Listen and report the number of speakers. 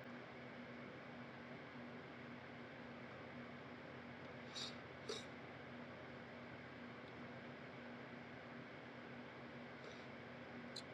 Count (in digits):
0